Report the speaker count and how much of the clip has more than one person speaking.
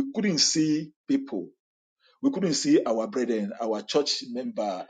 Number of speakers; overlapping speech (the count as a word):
one, no overlap